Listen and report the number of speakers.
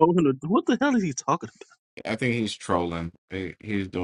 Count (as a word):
two